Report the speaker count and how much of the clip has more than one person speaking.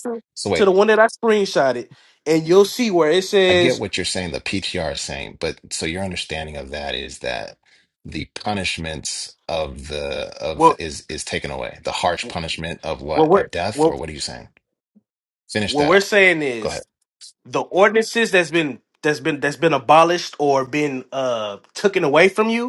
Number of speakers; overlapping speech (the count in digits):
2, about 8%